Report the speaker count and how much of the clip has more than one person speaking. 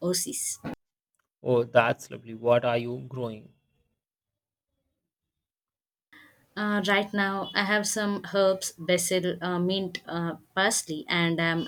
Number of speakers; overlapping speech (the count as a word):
two, no overlap